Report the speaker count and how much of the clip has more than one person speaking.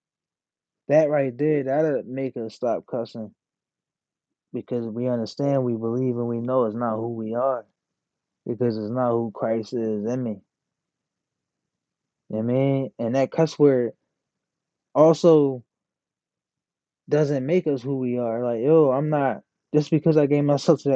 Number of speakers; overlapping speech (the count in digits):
1, no overlap